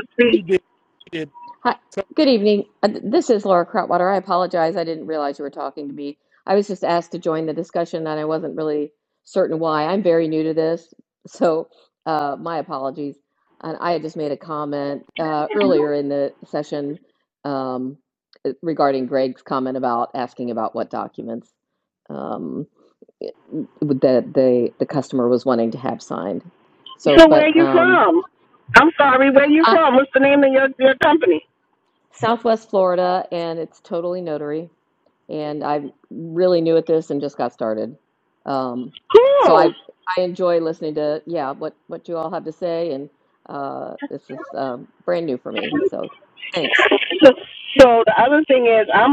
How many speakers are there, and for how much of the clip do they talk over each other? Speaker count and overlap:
two, about 2%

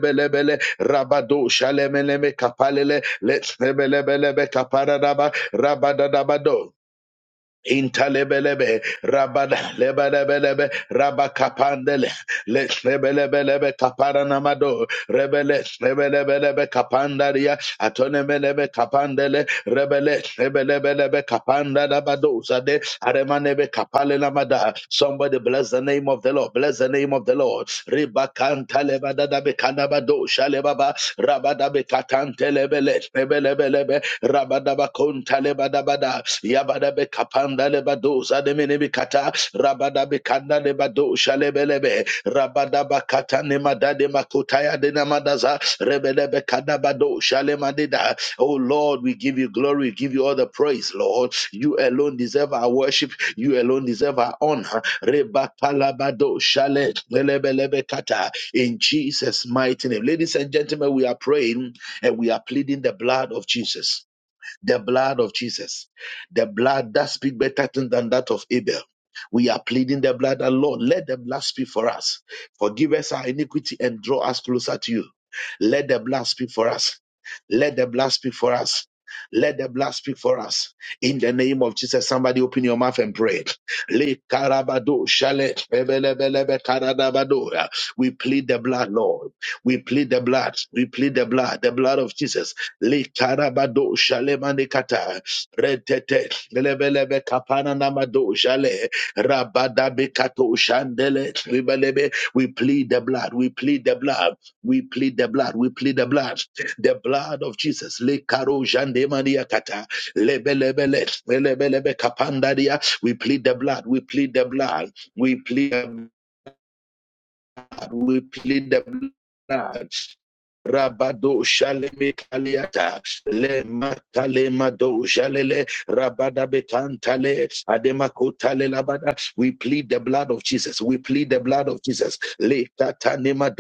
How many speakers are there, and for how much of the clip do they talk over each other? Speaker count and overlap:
one, no overlap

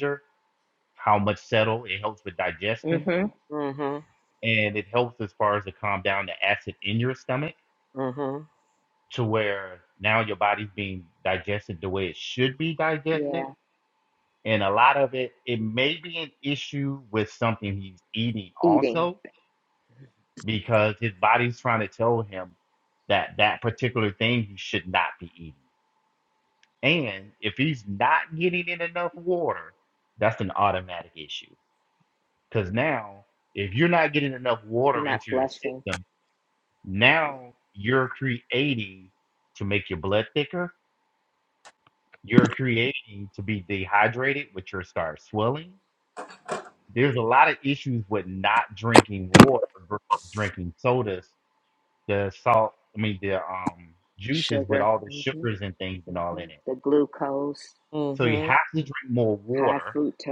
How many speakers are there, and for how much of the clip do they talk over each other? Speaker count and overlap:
three, about 7%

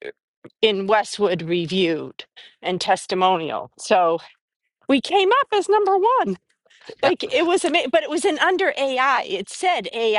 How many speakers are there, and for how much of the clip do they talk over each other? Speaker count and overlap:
one, no overlap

